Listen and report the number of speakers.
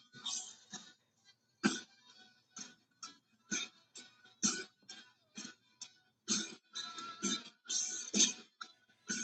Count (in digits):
0